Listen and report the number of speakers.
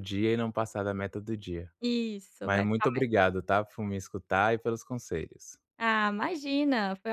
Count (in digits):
2